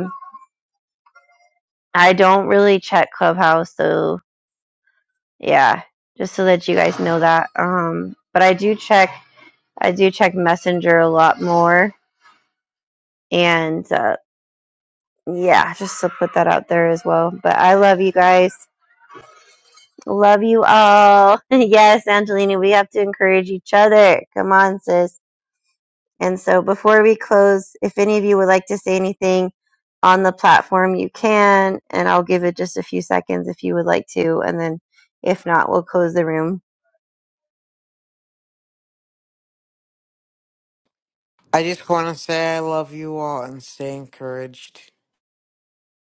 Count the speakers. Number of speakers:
two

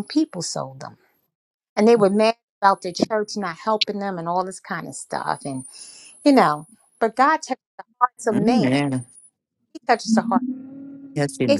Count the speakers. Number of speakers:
two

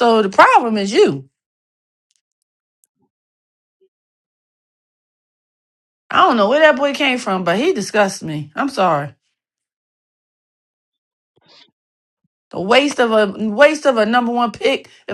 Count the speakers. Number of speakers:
one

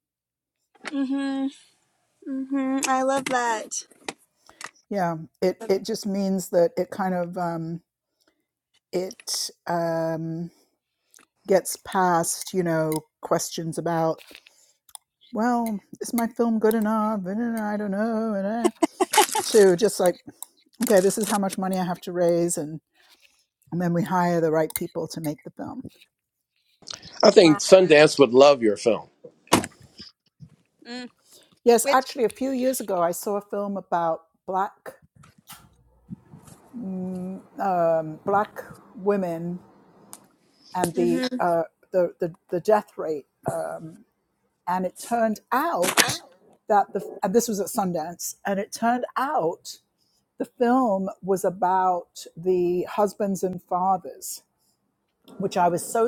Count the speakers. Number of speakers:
three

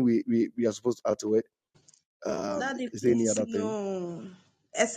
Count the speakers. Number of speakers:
two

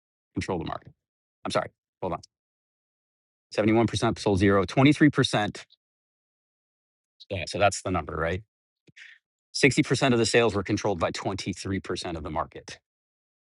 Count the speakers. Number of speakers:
one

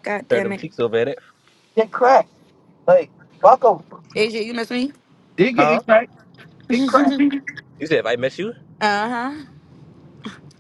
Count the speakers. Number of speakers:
three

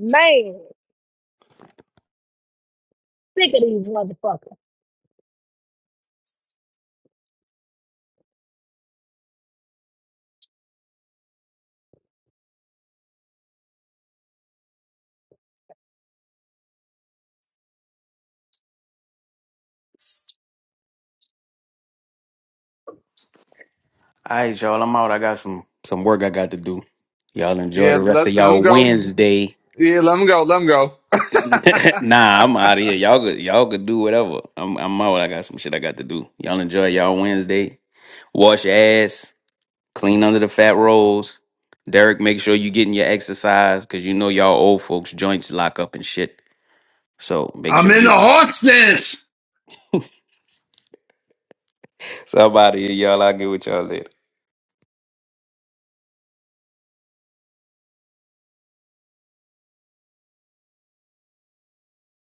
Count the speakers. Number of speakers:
four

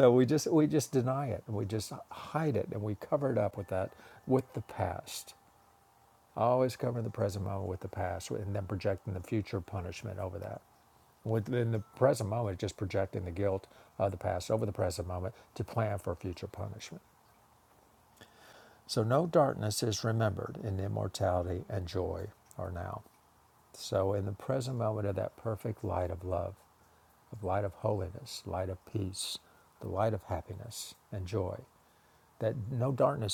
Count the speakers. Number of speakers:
one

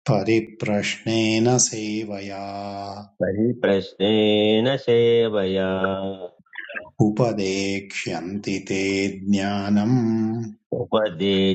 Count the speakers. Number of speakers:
two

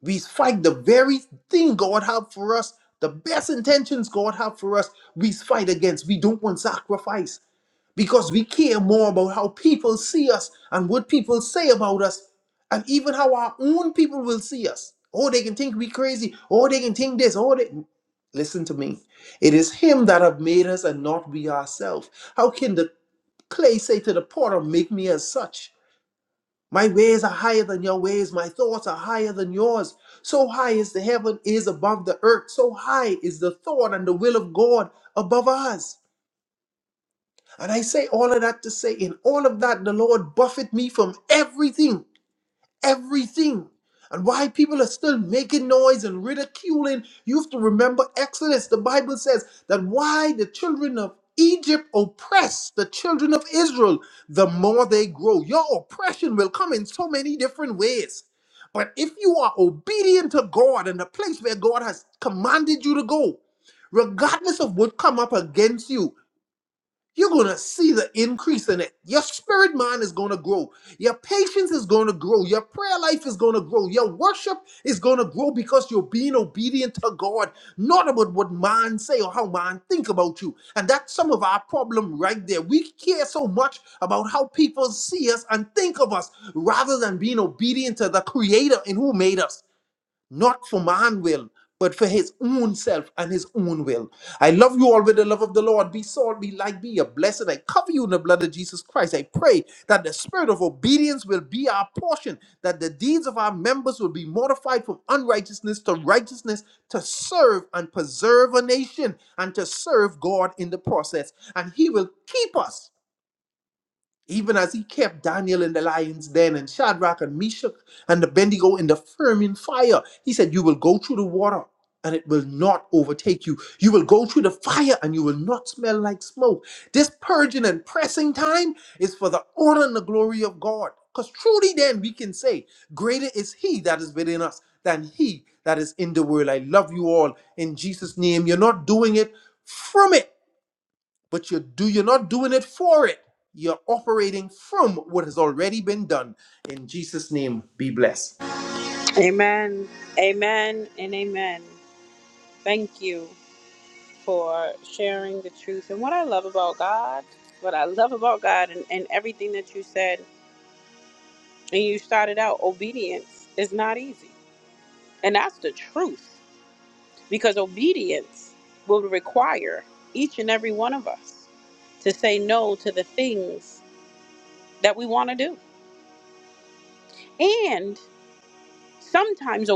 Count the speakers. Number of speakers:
two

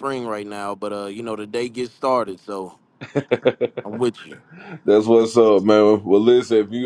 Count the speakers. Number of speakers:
two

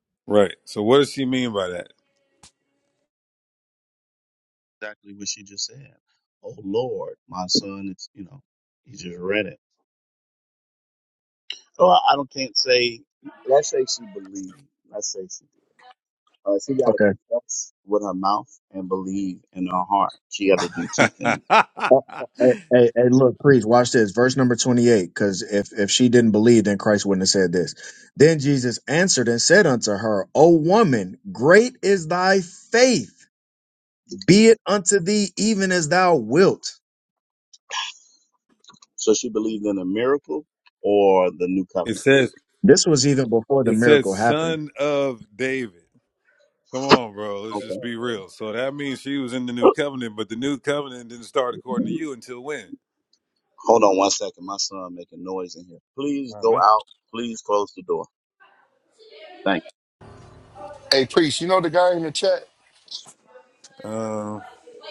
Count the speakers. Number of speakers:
four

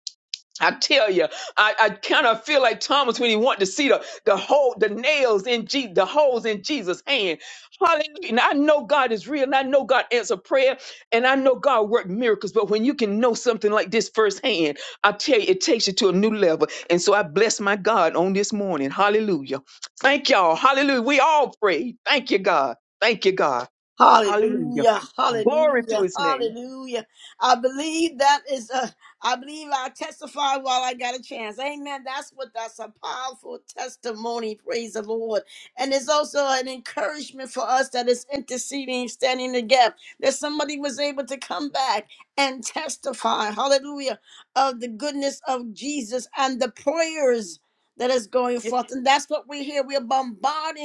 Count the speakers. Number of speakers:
two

